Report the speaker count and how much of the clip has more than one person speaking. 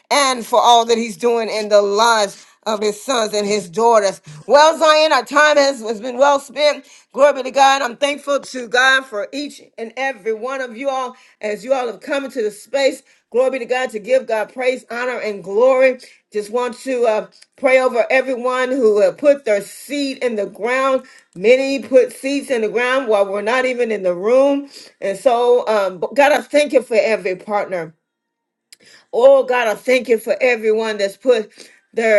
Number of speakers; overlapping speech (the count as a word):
one, no overlap